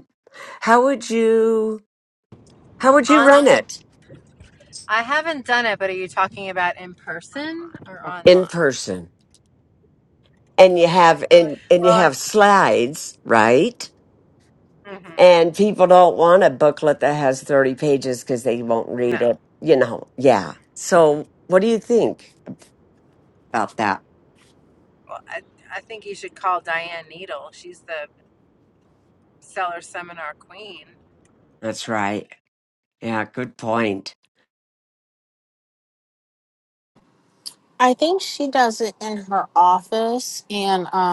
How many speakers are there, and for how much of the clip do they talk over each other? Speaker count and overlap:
3, about 4%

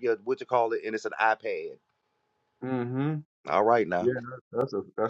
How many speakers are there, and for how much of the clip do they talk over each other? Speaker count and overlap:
2, about 1%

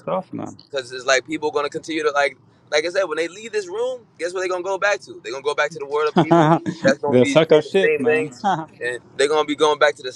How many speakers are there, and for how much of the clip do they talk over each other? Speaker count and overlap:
2, about 21%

